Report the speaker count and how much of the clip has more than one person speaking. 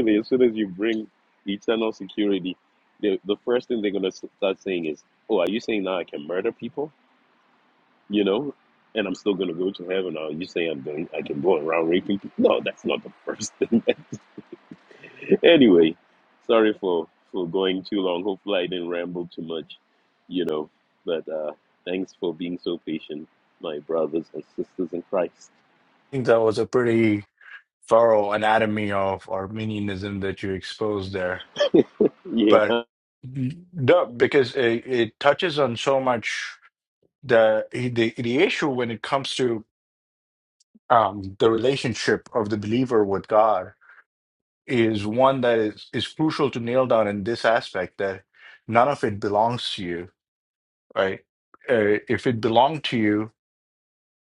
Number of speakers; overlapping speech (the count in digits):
2, under 1%